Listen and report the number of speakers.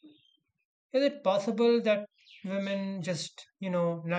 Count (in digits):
1